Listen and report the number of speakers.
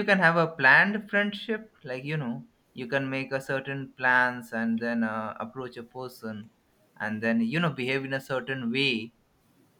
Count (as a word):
one